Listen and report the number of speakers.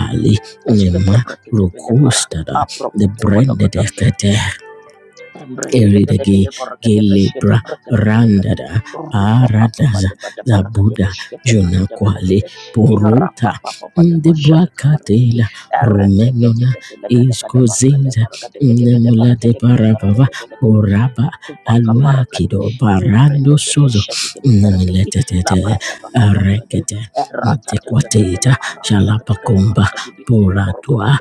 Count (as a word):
two